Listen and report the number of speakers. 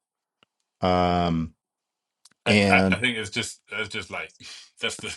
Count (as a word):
two